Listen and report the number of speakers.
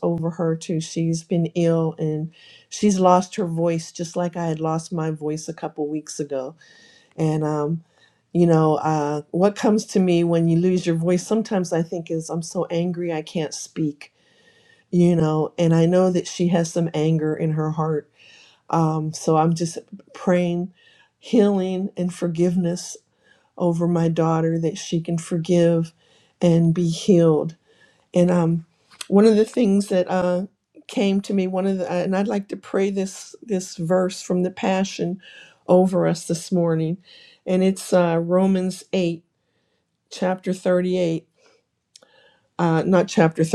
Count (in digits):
1